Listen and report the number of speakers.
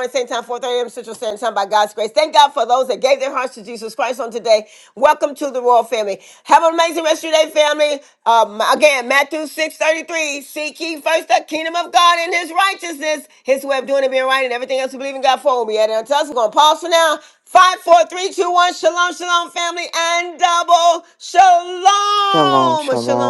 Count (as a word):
two